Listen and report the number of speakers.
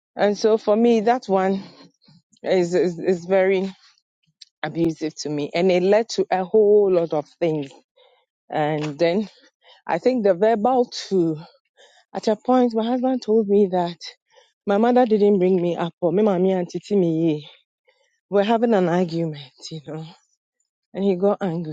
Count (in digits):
1